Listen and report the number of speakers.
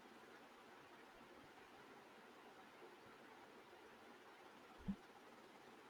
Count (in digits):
0